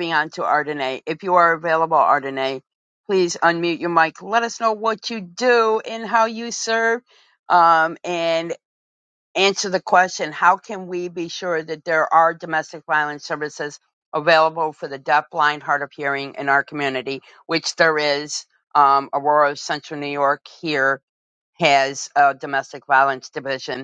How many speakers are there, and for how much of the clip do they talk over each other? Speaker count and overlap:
one, no overlap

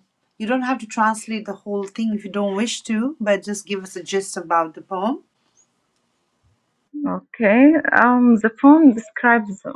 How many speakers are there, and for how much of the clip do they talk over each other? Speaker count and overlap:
two, no overlap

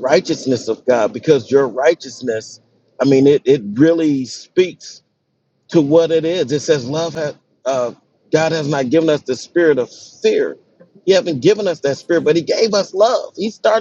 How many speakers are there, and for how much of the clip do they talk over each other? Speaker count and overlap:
one, no overlap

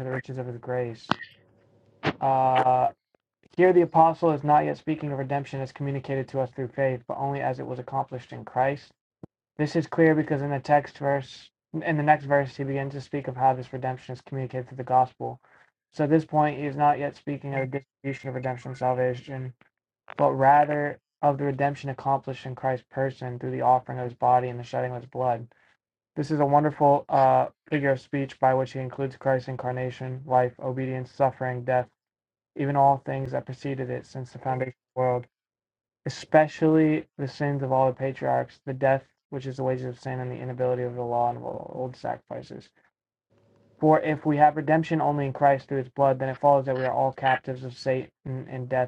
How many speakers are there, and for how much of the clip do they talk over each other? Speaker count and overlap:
one, no overlap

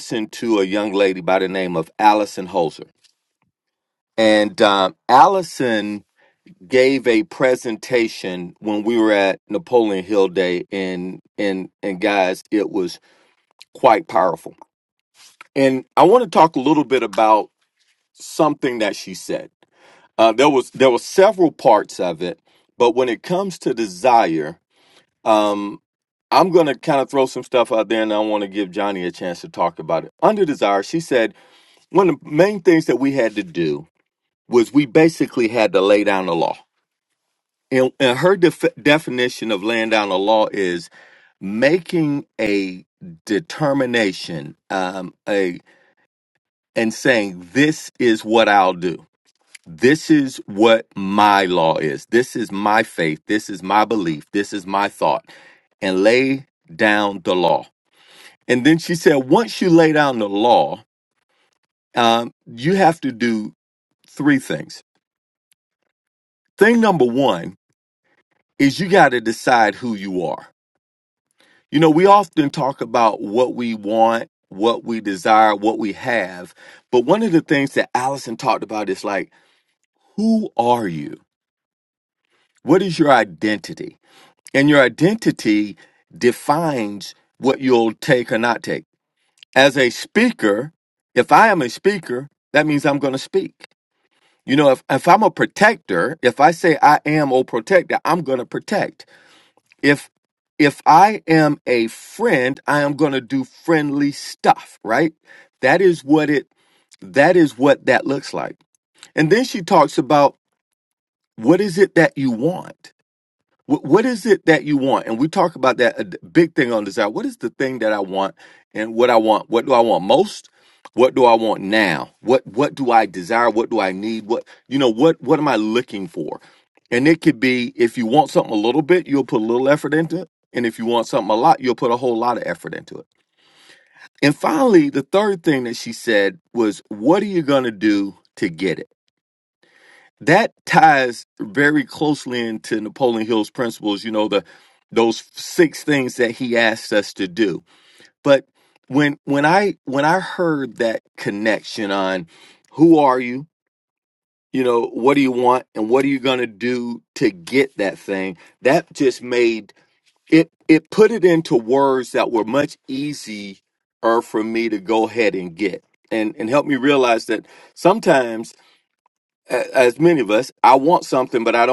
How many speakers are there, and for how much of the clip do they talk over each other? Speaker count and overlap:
one, no overlap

